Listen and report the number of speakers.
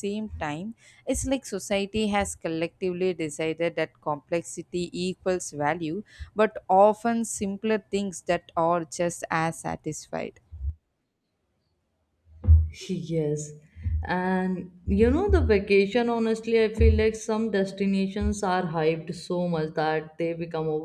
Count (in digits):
2